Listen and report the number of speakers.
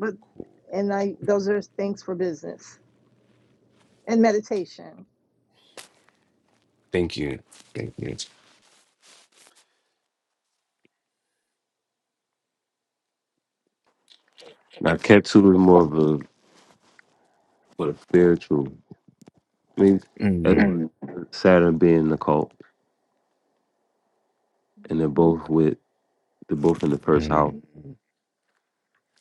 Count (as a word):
three